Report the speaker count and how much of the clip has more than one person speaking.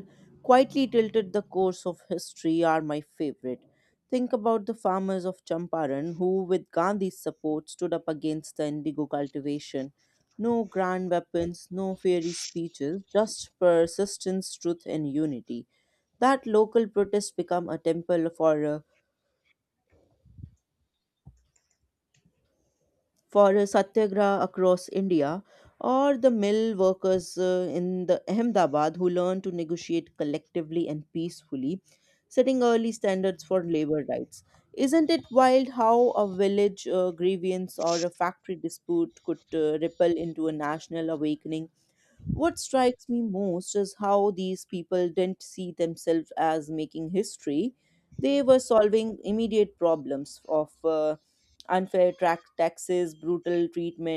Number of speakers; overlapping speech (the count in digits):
1, no overlap